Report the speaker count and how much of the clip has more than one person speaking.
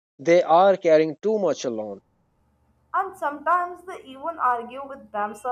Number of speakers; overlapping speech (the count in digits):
2, no overlap